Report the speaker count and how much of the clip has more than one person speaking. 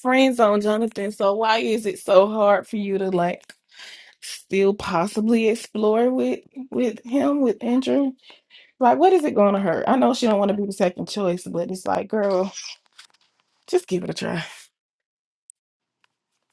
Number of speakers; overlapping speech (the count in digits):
1, no overlap